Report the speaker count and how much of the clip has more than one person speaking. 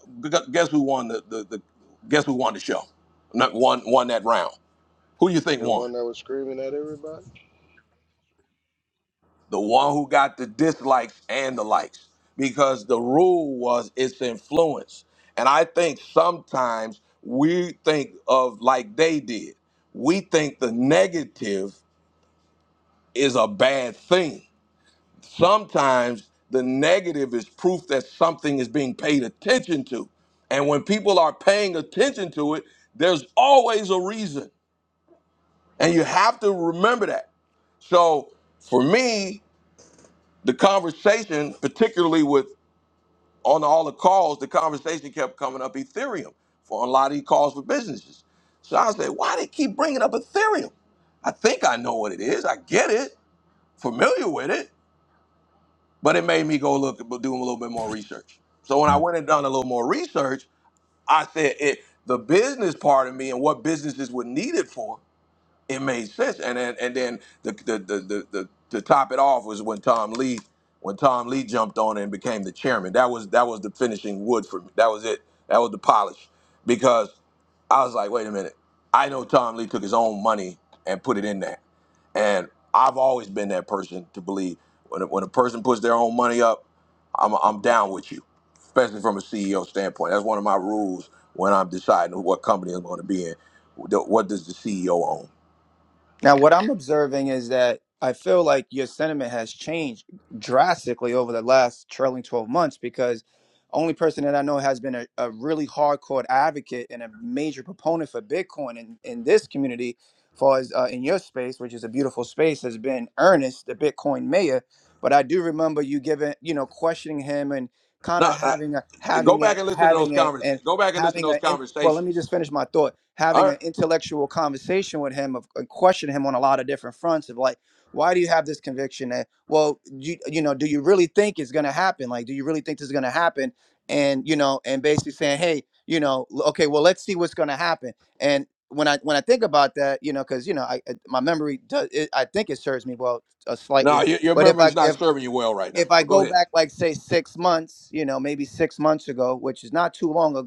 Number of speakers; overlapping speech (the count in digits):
3, about 3%